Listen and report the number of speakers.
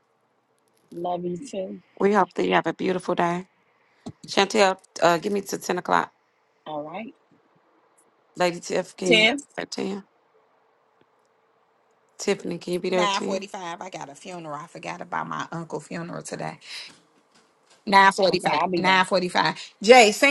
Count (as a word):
three